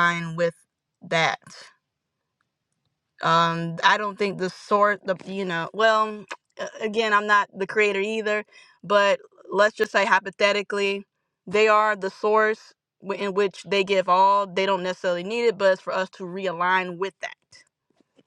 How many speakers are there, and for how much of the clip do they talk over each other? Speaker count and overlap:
one, no overlap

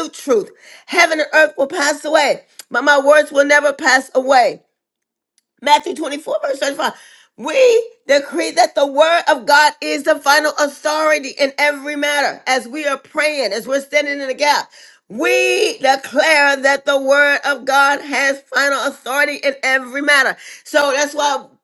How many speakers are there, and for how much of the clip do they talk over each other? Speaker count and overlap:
one, no overlap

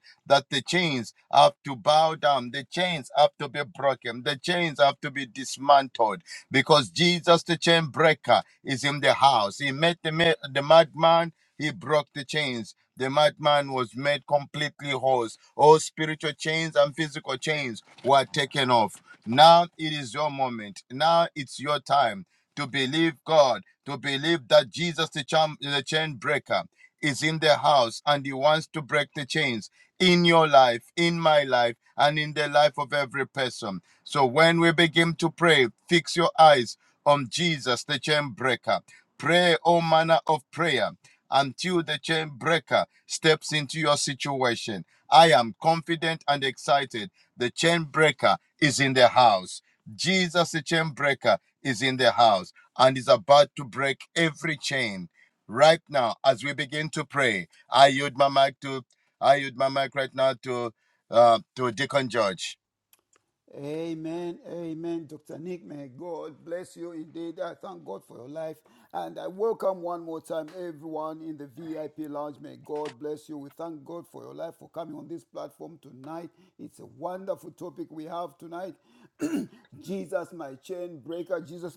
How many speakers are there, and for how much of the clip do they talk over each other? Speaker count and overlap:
two, no overlap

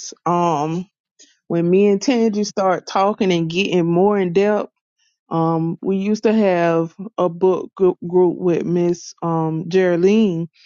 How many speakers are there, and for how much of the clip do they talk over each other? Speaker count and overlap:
one, no overlap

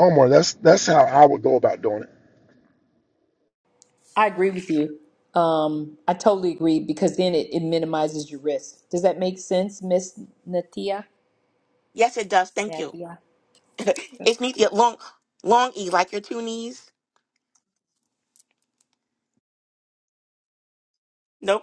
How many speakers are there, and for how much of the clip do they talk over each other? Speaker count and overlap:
three, about 1%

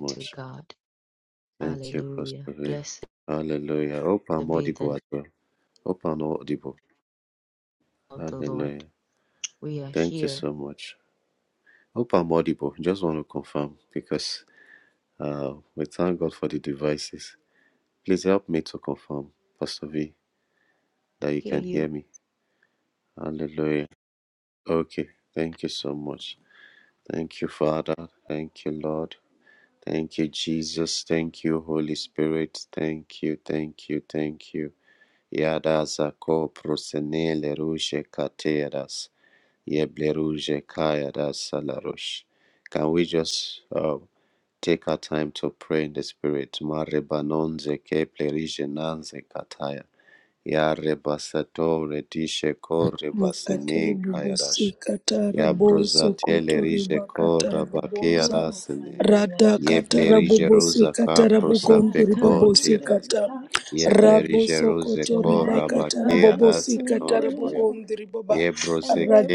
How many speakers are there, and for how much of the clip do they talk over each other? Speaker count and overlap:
three, about 24%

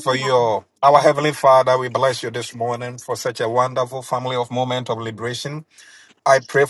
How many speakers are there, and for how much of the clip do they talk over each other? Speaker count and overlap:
one, no overlap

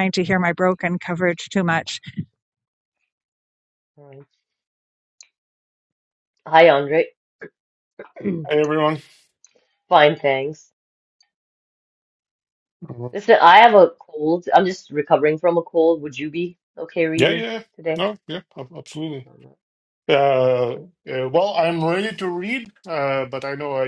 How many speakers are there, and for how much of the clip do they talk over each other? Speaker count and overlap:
three, about 1%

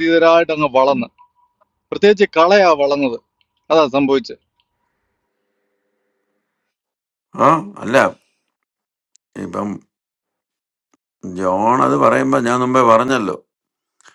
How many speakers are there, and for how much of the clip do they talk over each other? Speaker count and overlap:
two, no overlap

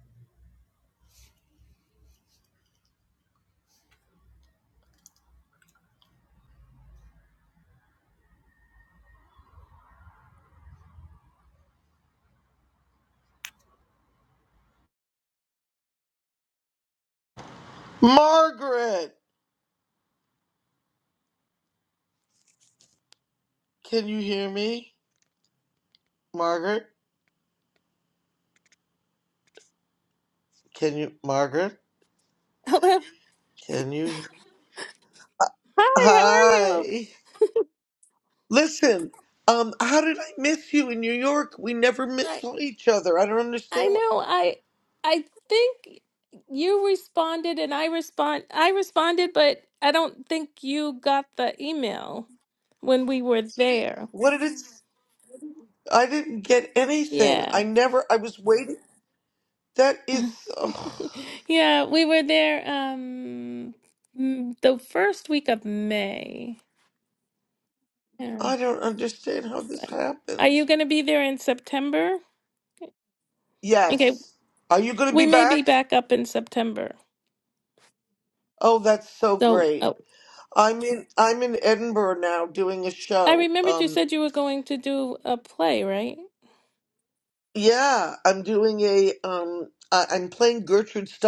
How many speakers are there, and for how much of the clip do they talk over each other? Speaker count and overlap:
two, about 5%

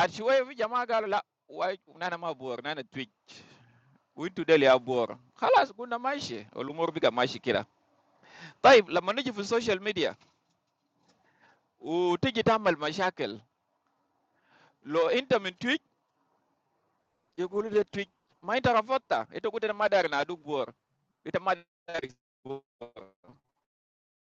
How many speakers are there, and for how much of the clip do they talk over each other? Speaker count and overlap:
one, no overlap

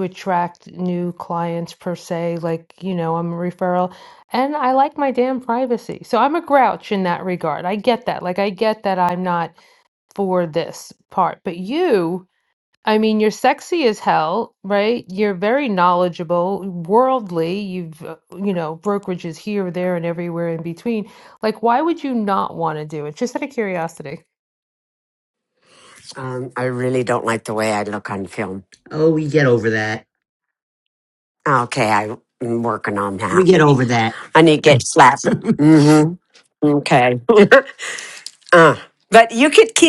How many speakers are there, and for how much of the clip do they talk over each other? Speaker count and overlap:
three, under 1%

